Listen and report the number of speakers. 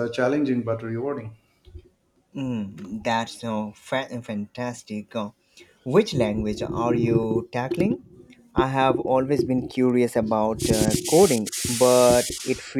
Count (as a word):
two